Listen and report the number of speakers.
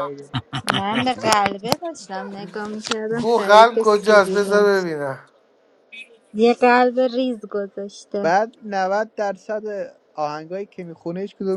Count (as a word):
three